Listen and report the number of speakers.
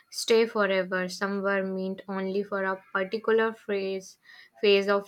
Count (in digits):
1